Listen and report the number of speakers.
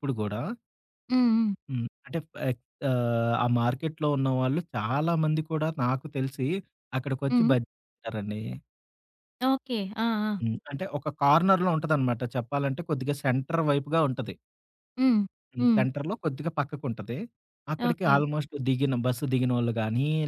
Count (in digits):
2